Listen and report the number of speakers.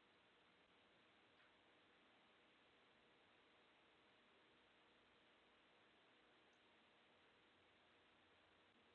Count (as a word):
zero